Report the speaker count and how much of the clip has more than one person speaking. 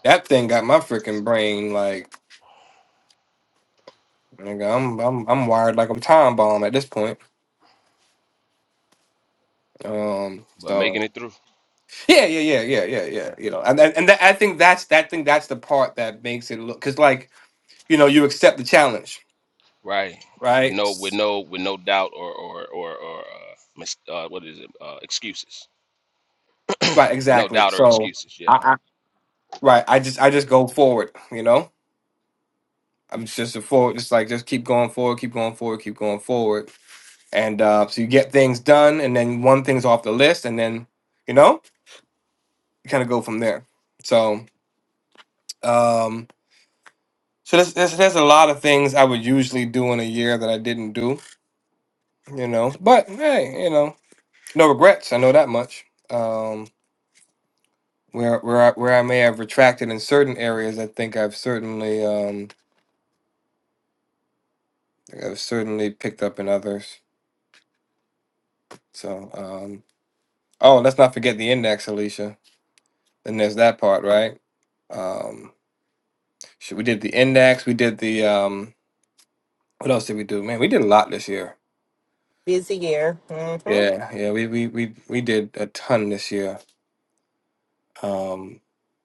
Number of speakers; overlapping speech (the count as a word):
three, about 2%